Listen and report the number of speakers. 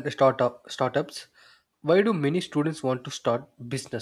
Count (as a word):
one